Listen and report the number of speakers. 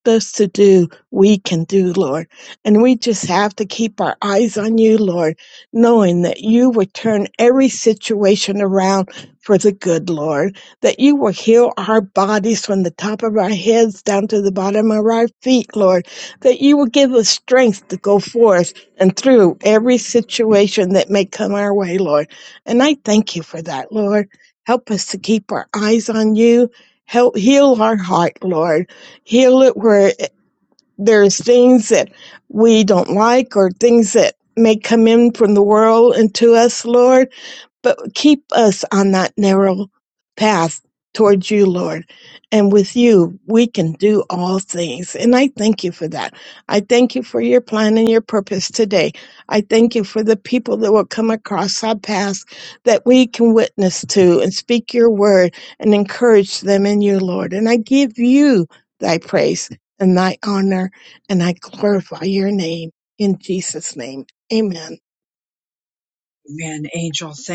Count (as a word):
two